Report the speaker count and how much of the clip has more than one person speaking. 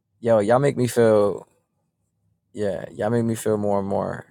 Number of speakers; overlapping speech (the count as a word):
one, no overlap